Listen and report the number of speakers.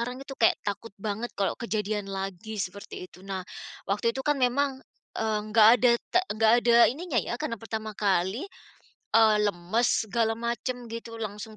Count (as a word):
one